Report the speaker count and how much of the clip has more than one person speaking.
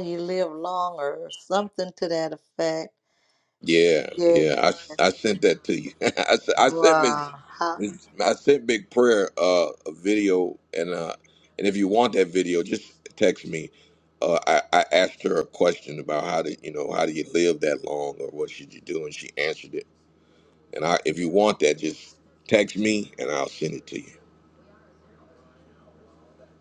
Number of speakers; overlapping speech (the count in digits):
2, about 4%